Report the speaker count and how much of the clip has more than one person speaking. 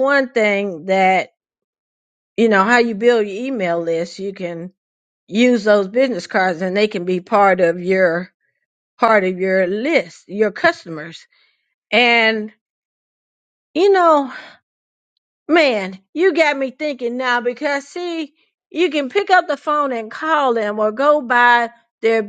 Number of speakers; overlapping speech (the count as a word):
one, no overlap